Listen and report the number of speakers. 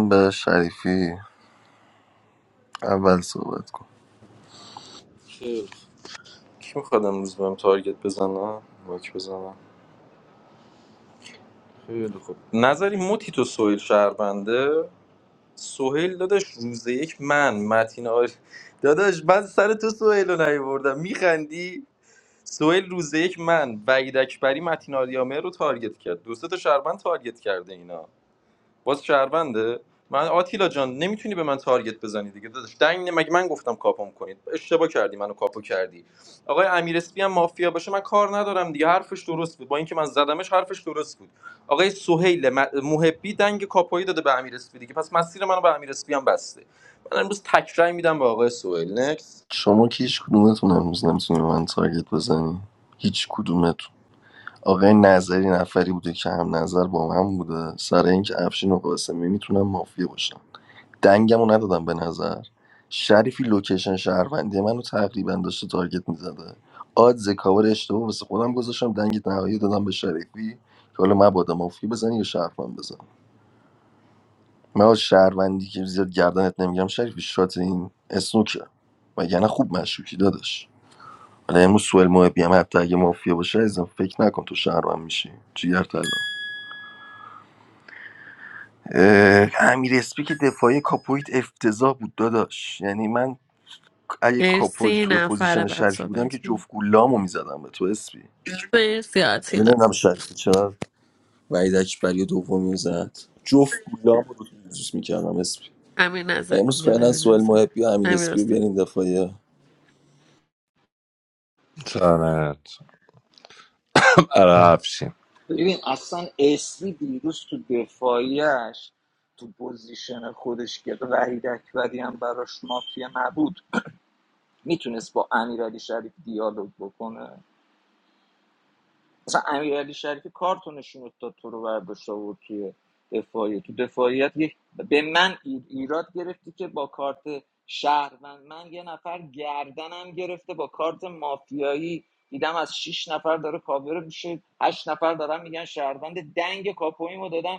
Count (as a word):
five